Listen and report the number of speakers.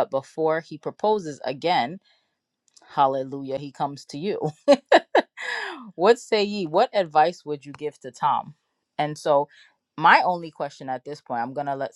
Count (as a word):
one